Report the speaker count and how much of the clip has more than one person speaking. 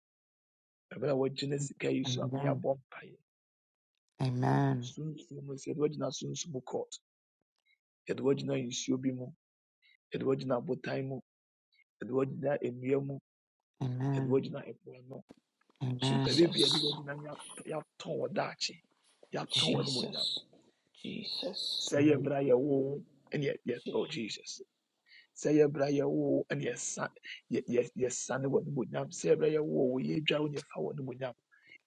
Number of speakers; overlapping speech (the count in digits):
3, about 9%